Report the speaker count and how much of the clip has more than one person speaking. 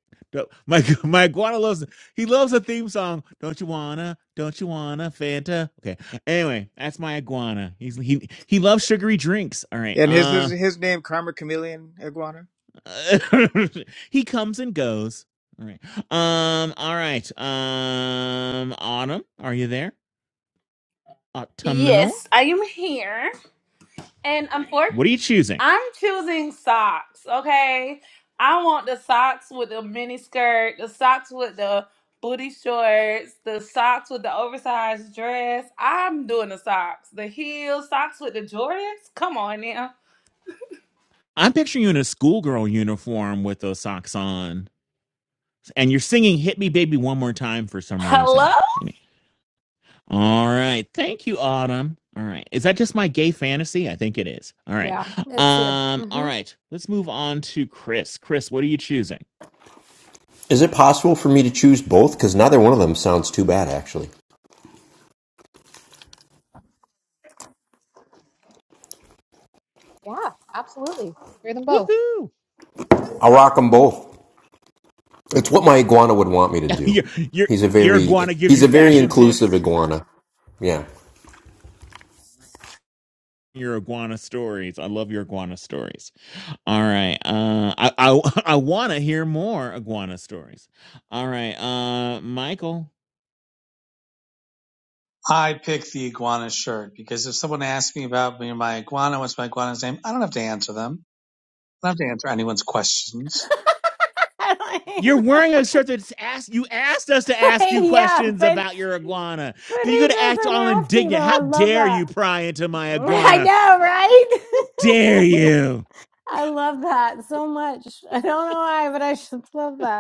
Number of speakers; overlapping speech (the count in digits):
7, about 8%